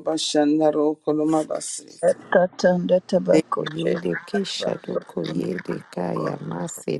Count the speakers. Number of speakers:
3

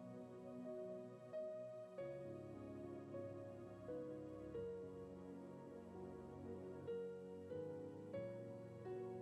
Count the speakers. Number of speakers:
0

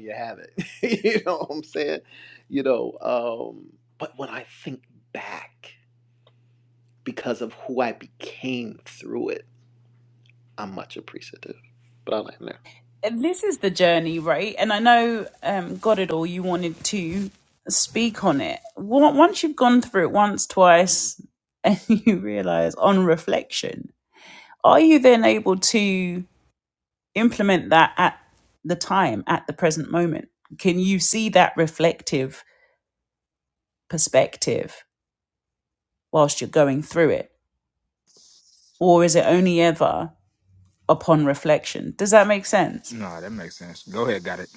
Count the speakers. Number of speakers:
3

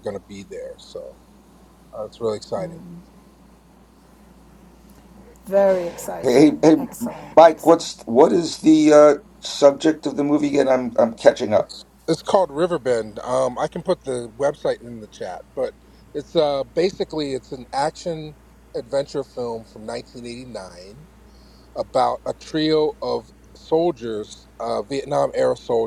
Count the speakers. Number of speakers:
3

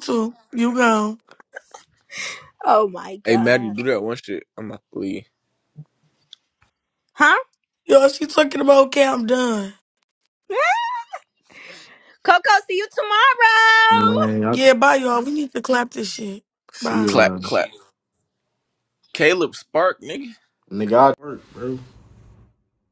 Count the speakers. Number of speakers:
4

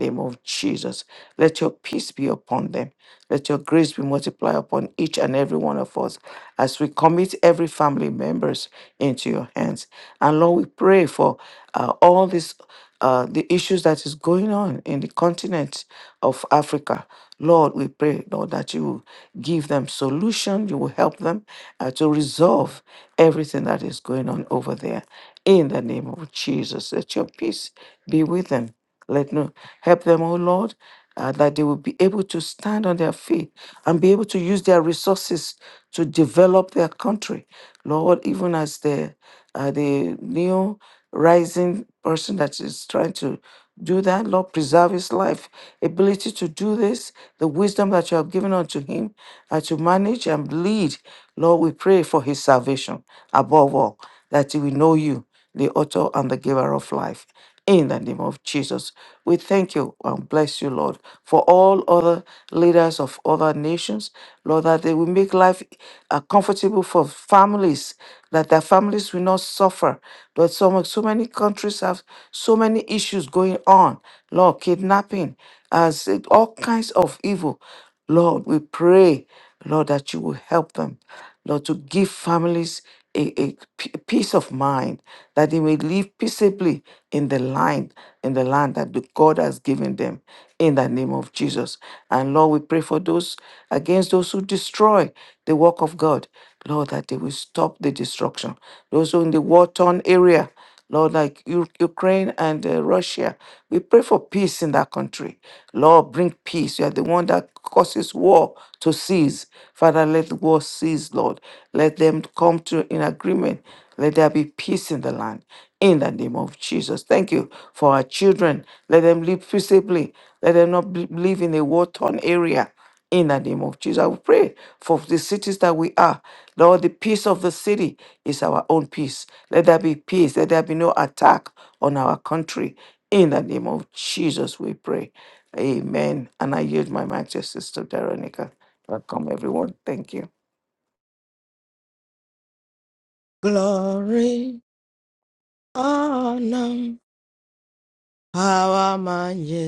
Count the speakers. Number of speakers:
2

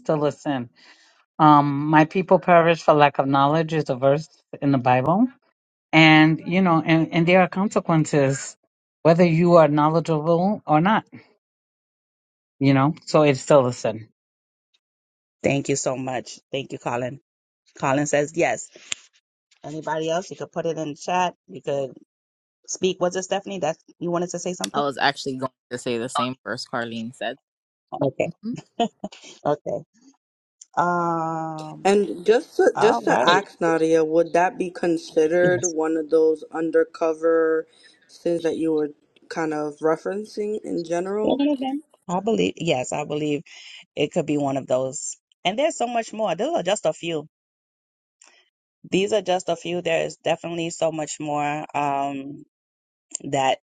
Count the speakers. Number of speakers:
4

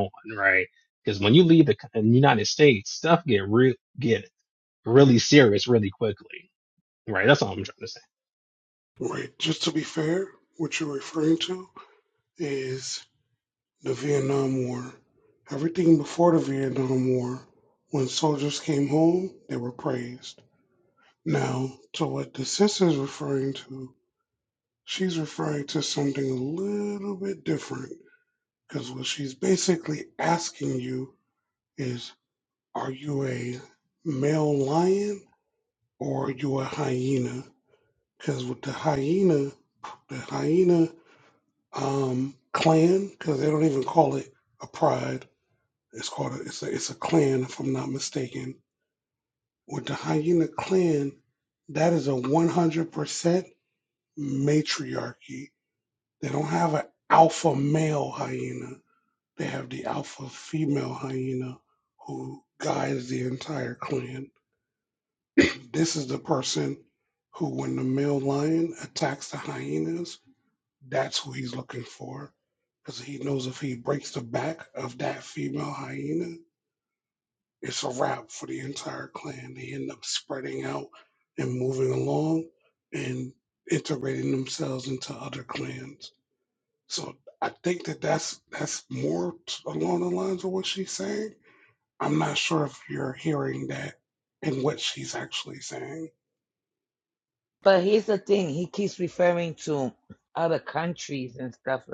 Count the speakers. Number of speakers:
3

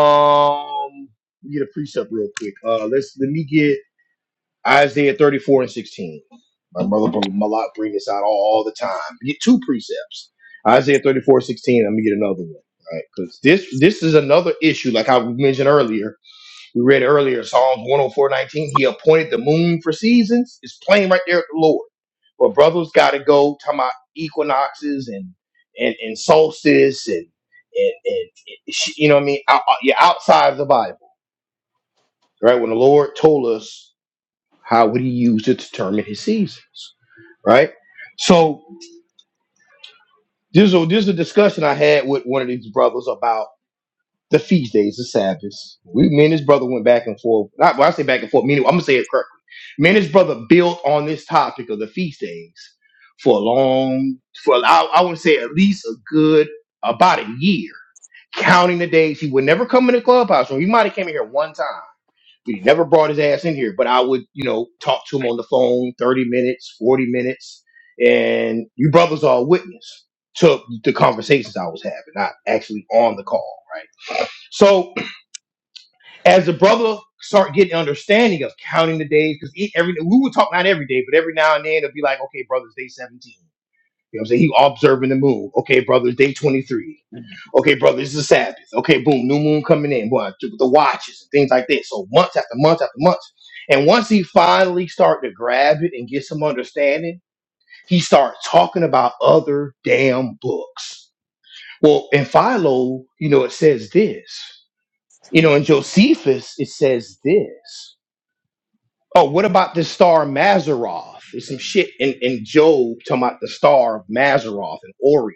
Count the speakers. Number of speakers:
1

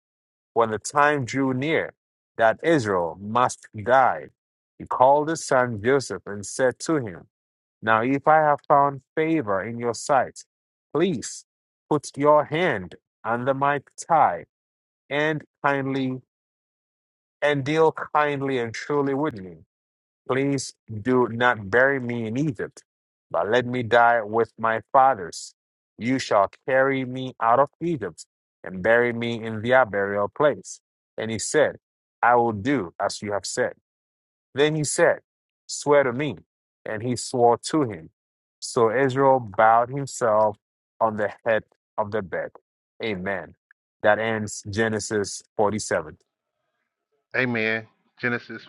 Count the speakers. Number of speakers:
2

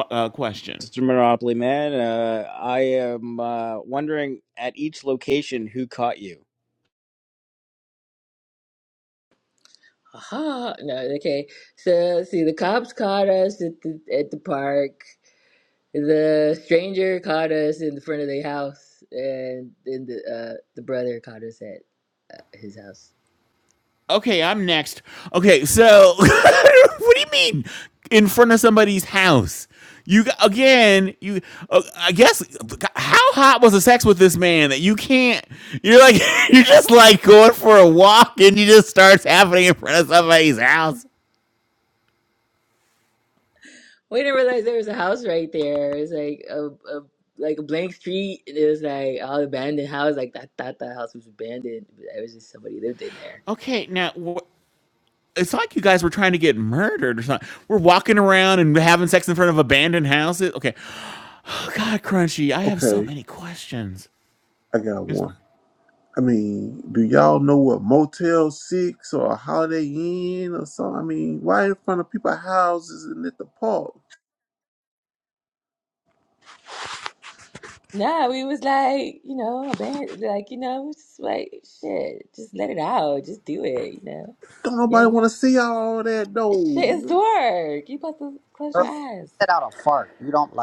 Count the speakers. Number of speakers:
5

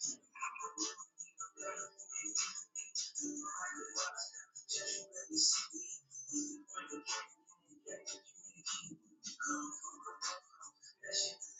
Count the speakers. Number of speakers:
0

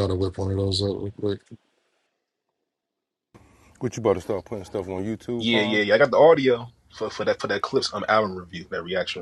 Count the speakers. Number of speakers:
3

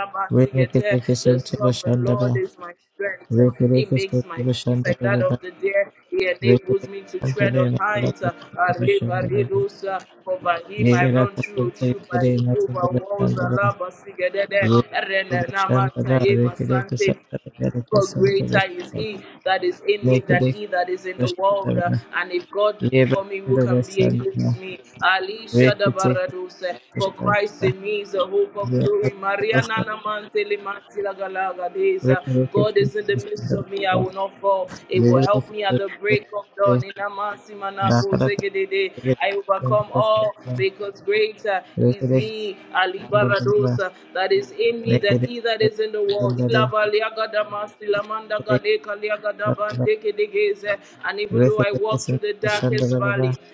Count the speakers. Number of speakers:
2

